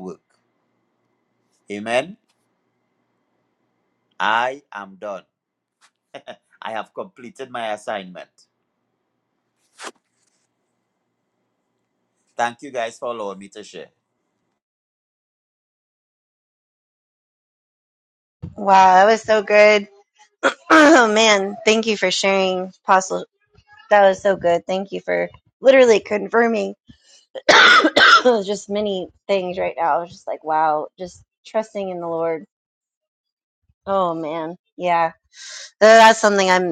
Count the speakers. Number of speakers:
two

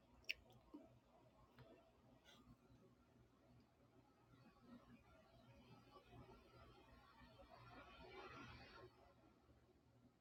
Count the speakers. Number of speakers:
zero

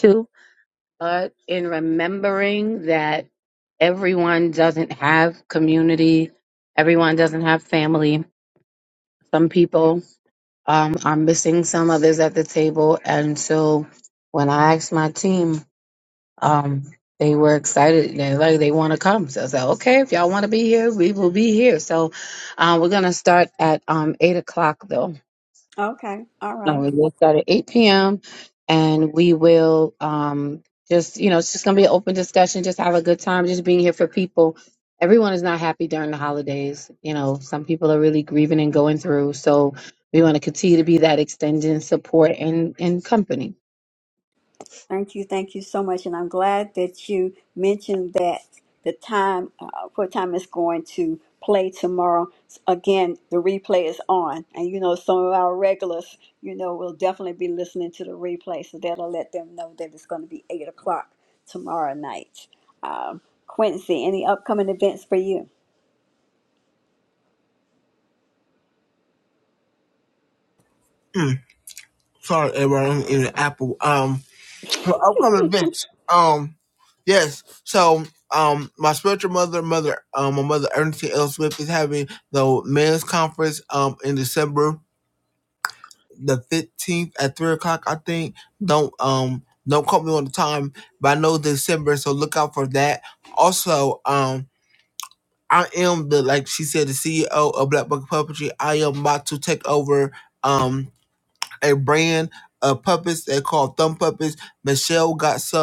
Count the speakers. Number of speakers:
three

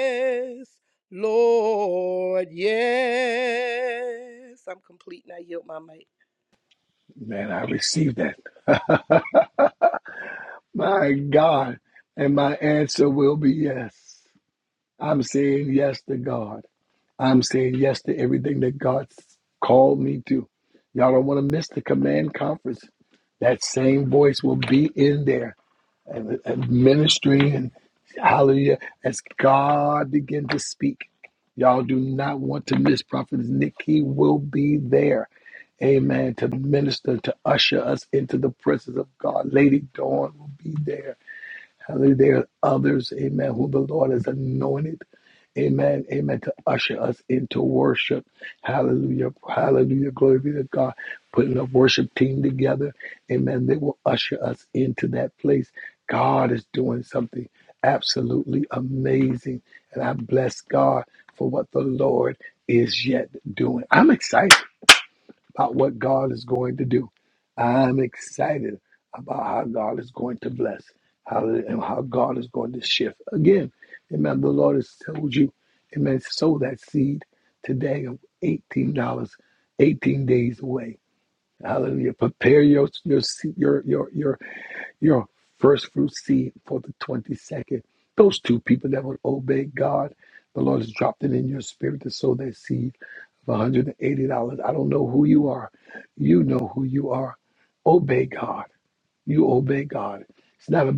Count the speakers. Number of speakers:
two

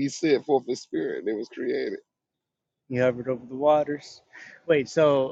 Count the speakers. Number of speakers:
two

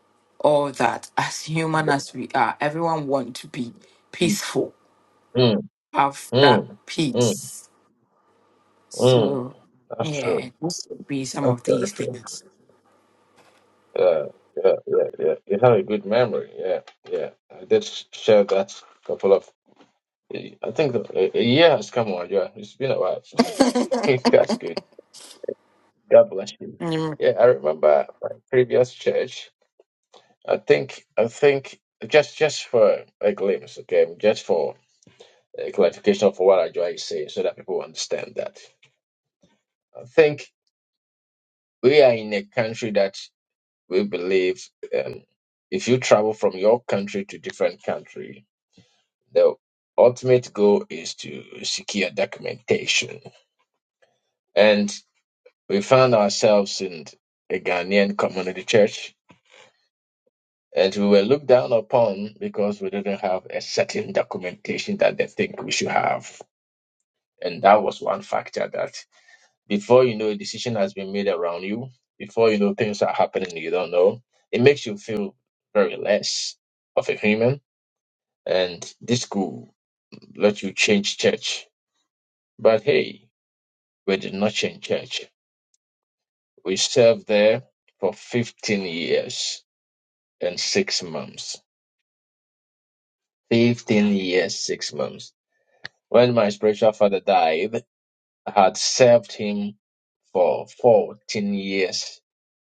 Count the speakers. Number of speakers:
two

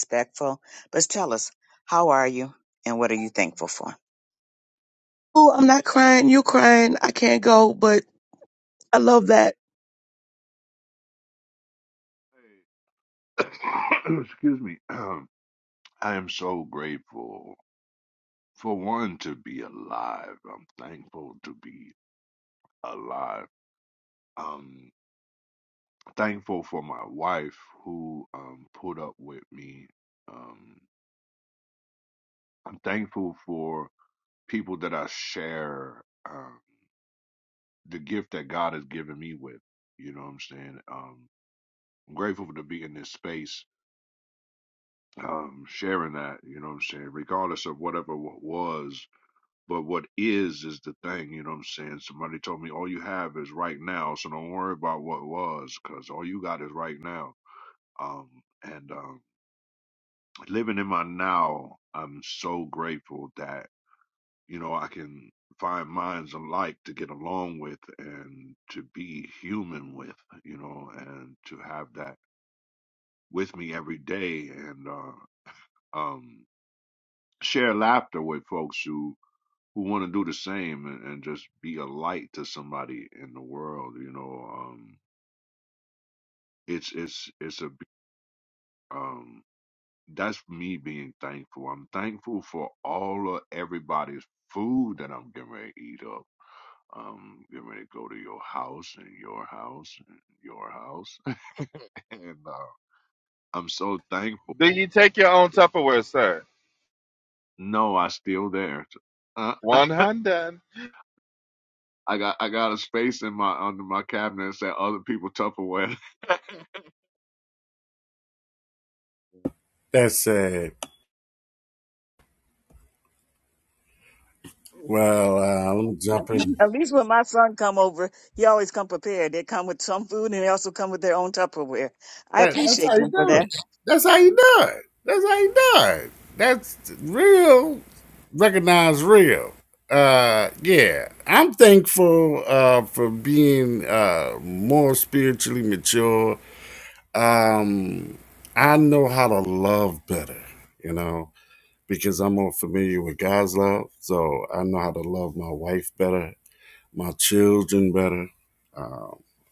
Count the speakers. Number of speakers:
five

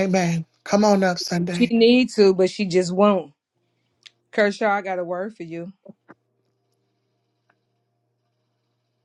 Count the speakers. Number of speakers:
two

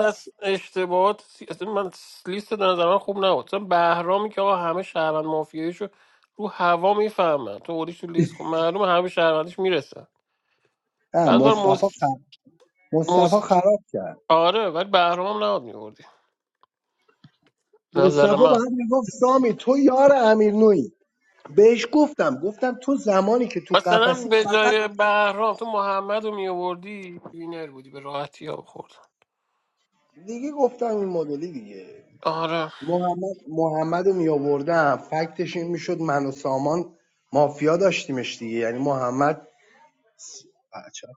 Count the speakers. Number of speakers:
two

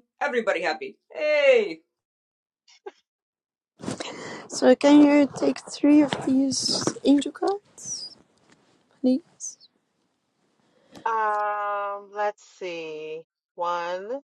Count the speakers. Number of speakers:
three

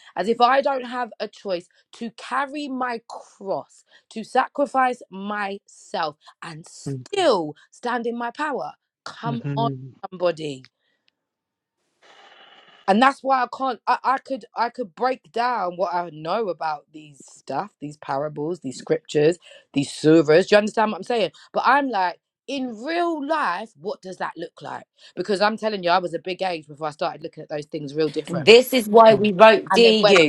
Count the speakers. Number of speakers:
two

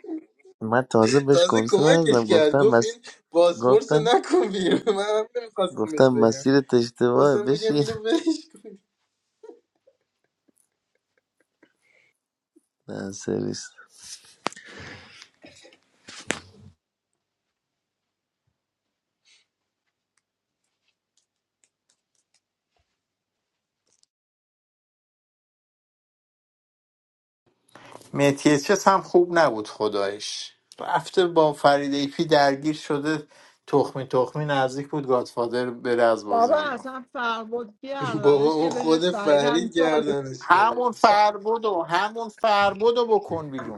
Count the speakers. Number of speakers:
four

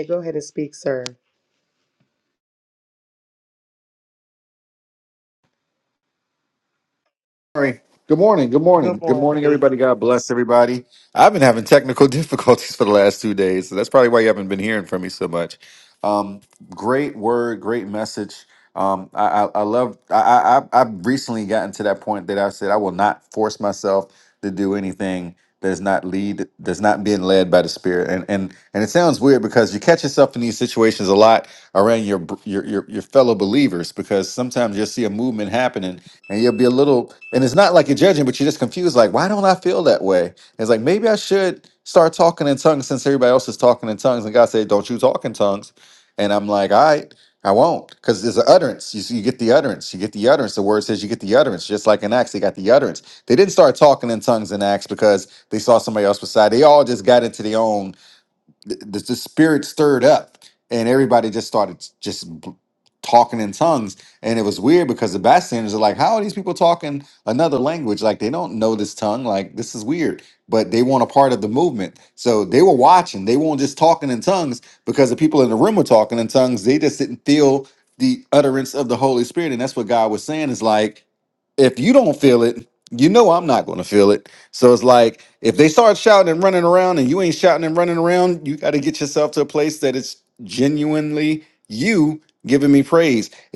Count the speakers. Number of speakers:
two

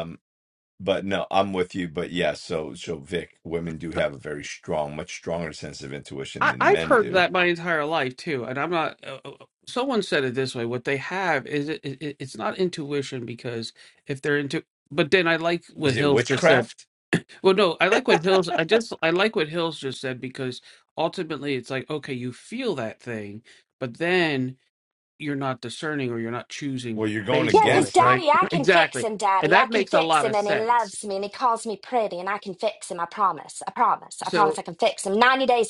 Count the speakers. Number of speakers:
three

